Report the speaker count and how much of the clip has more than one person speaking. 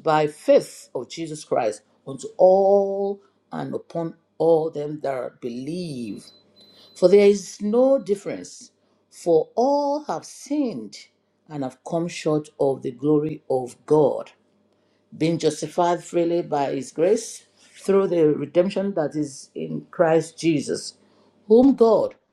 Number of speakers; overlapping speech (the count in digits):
1, no overlap